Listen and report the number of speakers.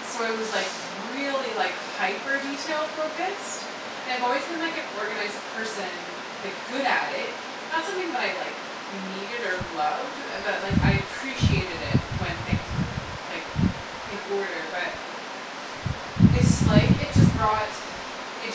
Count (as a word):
one